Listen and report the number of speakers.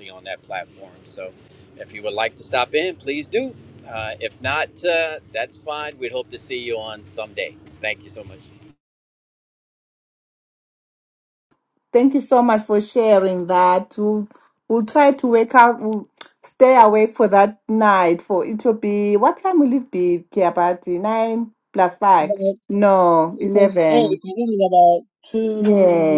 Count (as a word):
three